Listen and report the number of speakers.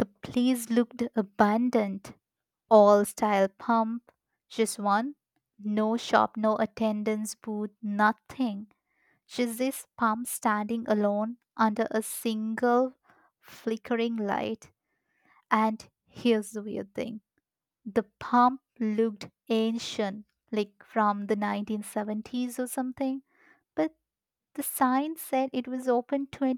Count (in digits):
1